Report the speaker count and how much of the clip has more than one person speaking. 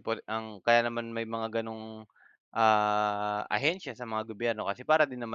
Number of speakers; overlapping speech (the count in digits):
1, no overlap